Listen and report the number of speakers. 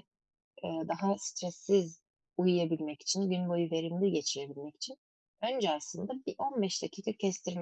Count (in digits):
1